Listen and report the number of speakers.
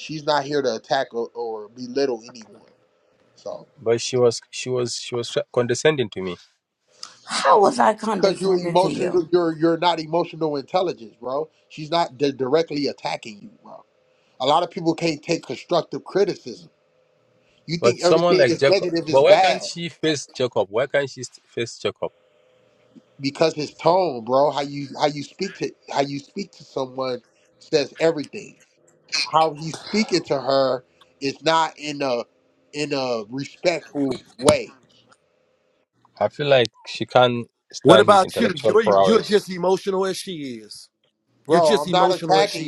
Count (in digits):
4